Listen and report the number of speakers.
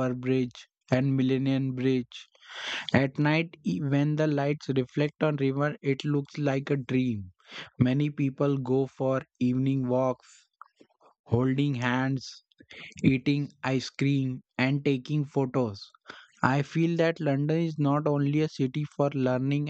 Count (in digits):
1